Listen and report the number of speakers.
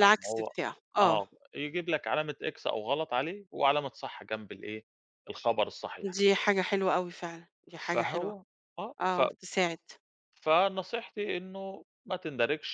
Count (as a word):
two